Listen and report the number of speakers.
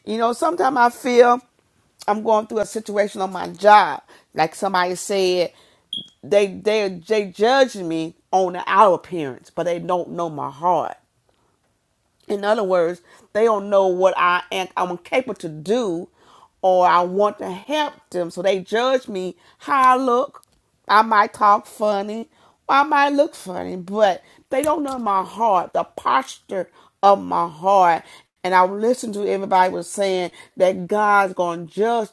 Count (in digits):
1